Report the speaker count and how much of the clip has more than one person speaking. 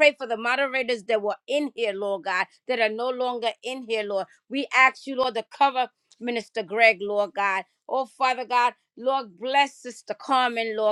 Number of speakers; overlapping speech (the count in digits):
1, no overlap